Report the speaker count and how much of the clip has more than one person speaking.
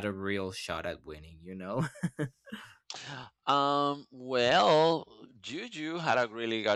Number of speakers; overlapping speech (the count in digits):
2, no overlap